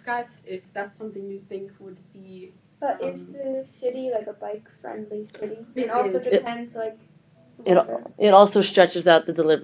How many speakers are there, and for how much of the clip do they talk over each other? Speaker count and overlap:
3, about 14%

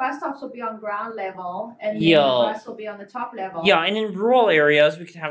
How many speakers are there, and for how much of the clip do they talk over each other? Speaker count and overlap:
2, about 15%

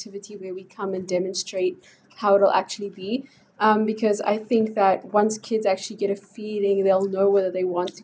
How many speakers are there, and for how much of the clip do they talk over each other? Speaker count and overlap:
1, no overlap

